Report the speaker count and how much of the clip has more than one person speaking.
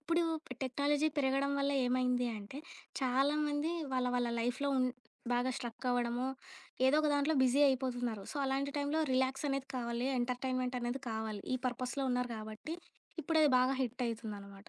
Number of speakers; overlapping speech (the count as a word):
one, no overlap